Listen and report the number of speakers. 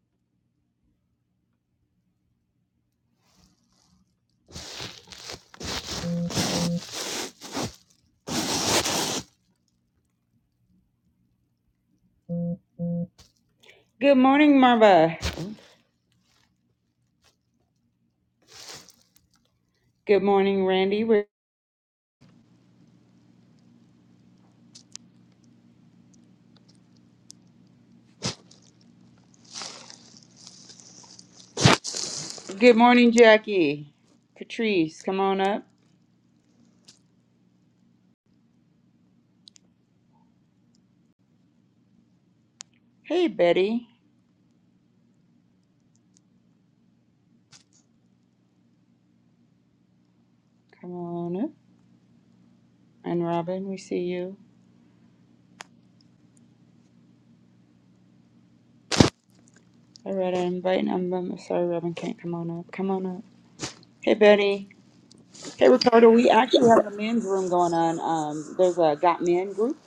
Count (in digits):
1